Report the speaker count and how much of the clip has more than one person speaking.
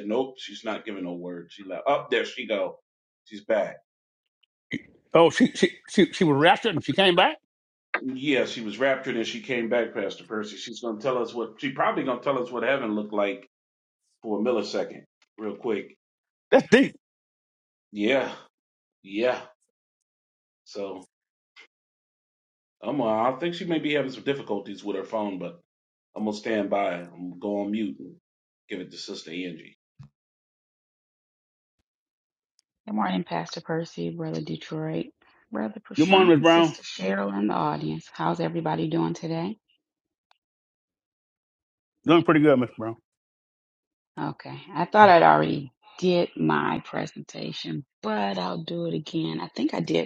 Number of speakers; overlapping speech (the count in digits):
3, about 2%